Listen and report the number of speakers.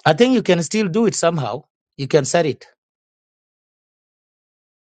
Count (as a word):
one